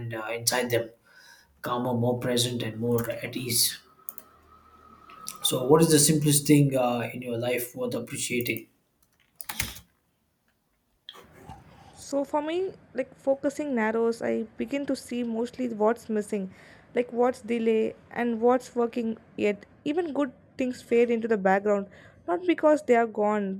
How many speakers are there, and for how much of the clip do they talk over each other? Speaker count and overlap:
2, no overlap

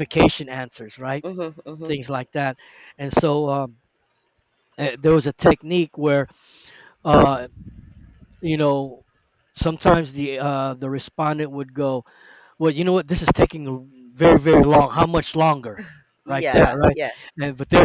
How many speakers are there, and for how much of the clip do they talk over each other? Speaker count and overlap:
2, about 4%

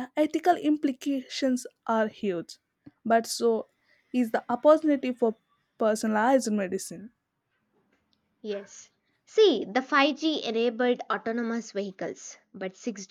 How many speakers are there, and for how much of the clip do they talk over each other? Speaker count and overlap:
2, no overlap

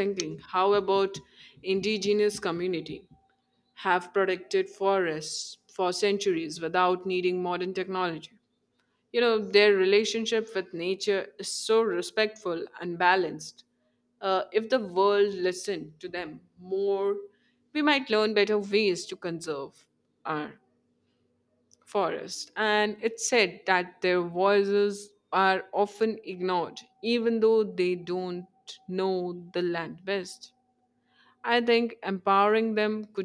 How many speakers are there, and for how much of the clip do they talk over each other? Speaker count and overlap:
1, no overlap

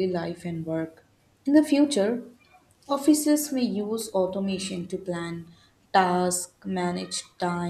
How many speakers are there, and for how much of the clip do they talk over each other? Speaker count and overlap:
1, no overlap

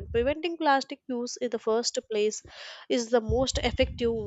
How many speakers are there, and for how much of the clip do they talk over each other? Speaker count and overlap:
1, no overlap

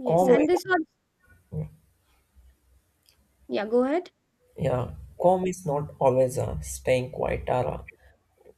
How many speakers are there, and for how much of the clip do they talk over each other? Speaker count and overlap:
2, about 4%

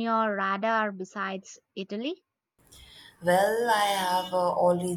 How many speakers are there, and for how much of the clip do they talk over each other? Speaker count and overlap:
2, no overlap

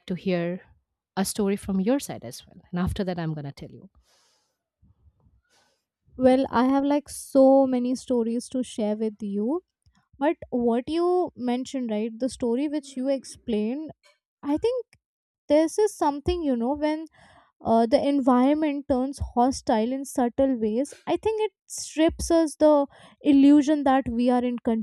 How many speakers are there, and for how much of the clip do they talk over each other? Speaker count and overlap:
2, no overlap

